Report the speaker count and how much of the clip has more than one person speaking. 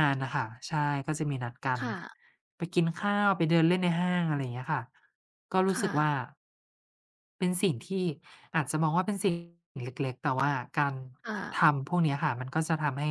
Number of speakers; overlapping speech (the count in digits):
2, about 4%